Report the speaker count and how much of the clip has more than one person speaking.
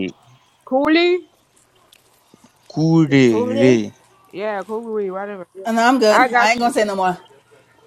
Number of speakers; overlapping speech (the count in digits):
3, about 11%